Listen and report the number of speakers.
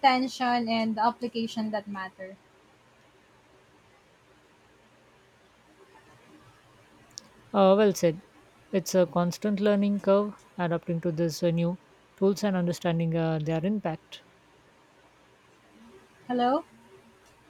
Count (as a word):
two